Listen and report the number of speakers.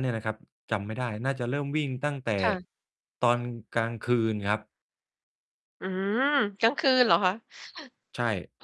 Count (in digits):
2